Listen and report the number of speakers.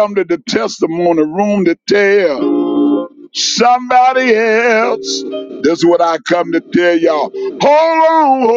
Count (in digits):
1